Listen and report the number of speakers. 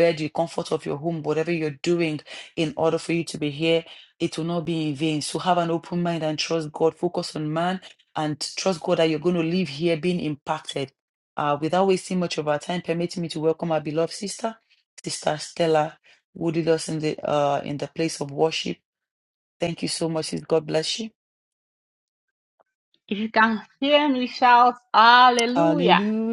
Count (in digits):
2